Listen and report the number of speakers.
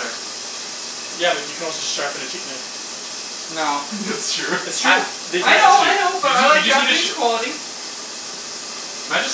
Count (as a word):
three